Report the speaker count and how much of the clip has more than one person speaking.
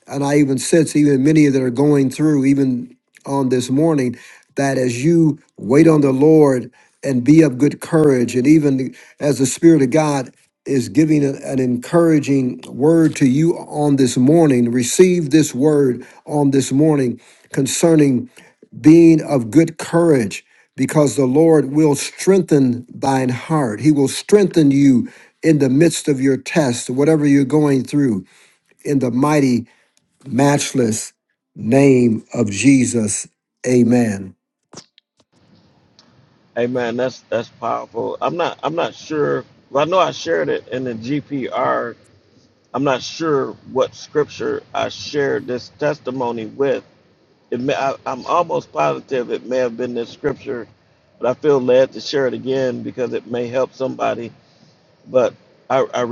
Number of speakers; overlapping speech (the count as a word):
two, no overlap